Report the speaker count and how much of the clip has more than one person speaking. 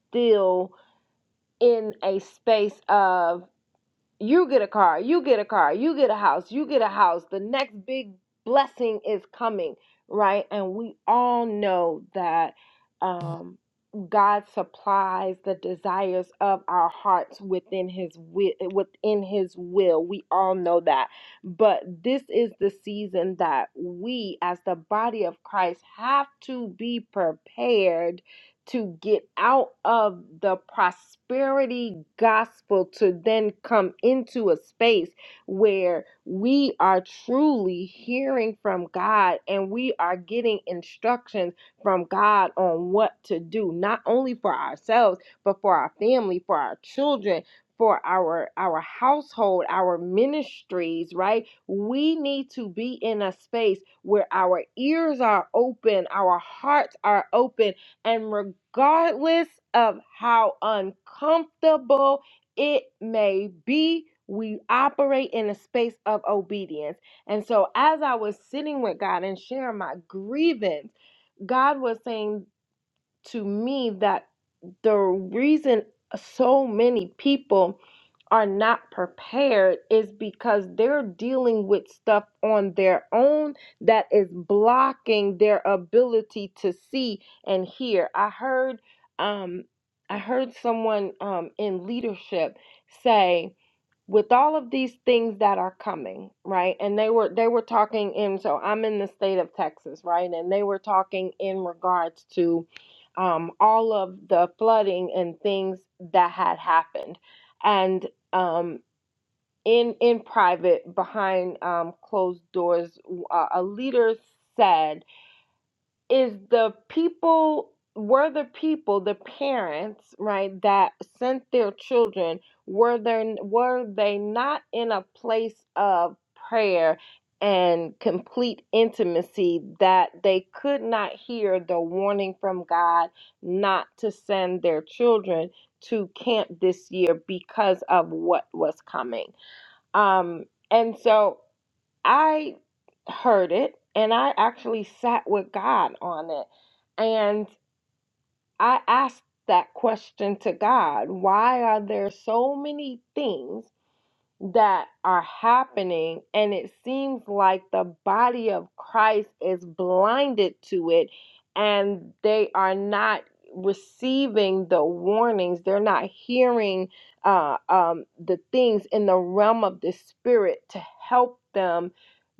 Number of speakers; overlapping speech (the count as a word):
one, no overlap